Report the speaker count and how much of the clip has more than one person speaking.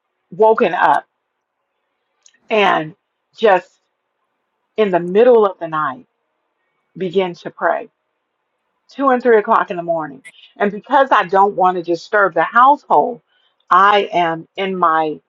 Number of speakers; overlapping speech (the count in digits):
1, no overlap